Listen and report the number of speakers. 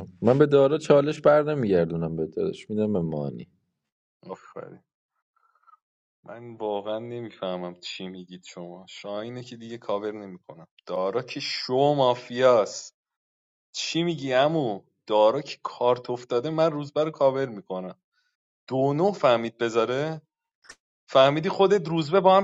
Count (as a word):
two